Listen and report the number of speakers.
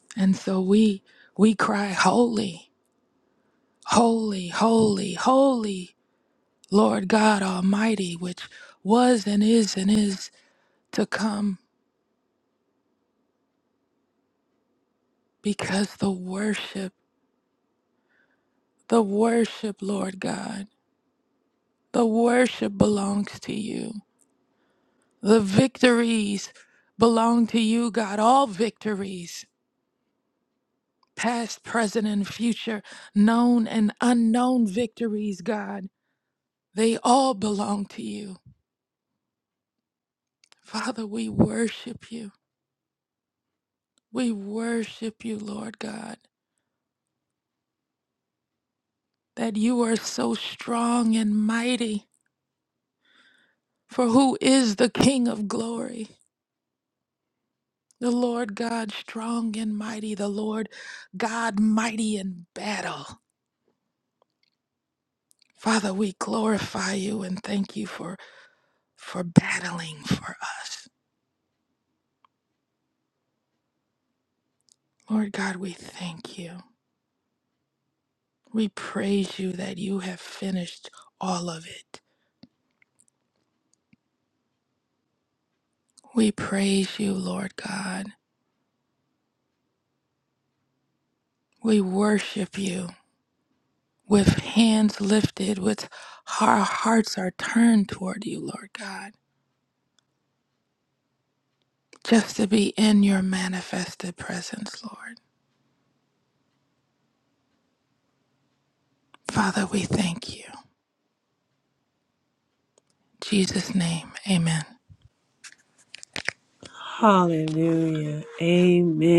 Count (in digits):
2